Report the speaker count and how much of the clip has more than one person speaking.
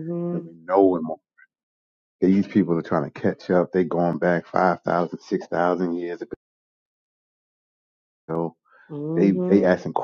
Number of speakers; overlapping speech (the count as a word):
two, about 7%